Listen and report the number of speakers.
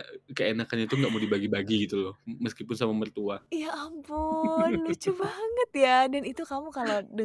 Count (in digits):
2